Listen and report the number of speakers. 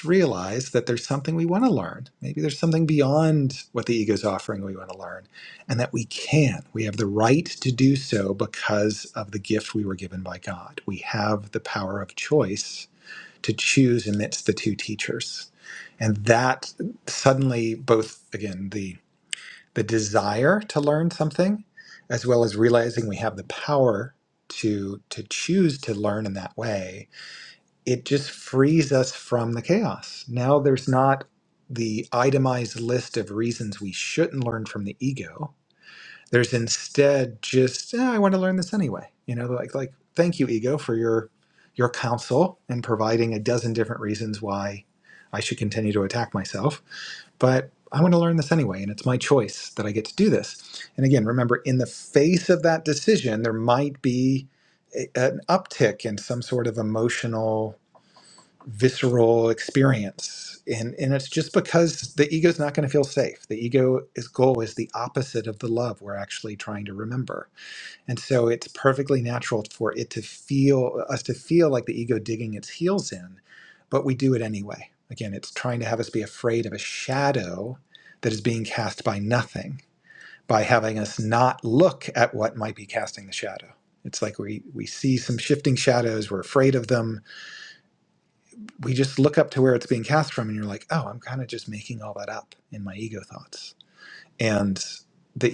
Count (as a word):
one